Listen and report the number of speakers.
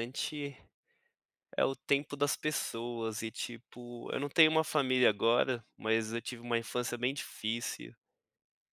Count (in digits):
1